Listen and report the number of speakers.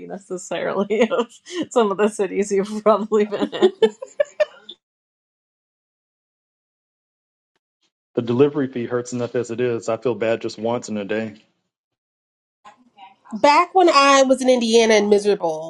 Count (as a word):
three